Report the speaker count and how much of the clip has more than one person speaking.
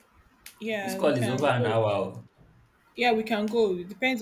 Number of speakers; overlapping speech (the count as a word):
two, about 22%